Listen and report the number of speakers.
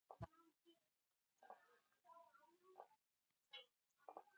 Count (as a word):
zero